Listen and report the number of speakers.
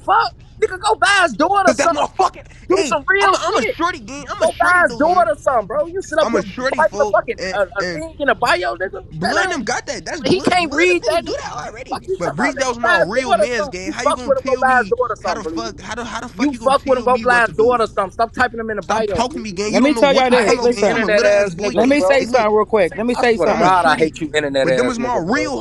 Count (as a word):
three